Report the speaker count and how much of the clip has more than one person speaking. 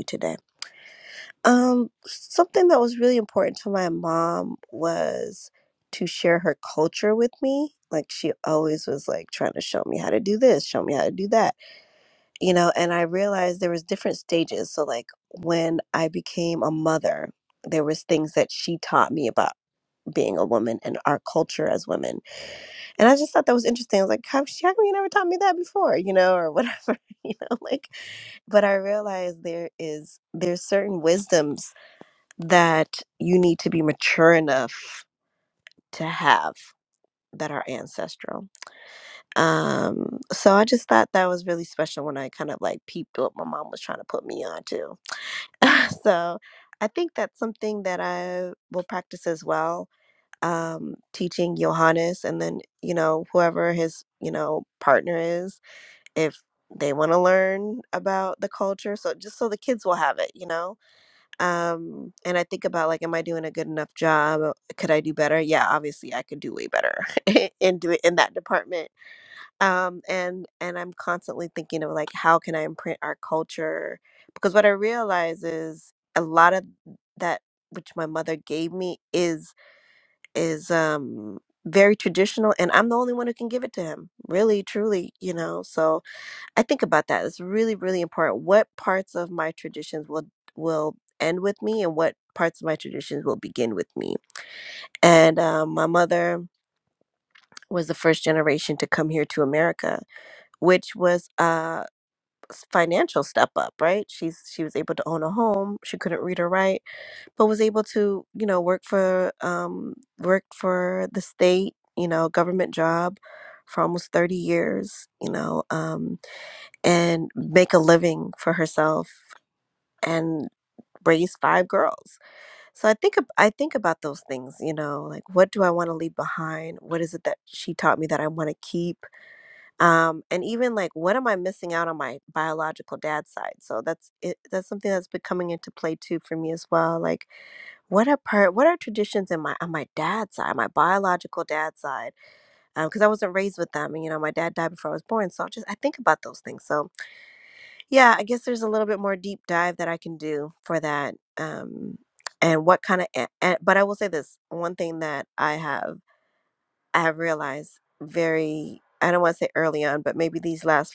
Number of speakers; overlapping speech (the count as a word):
one, no overlap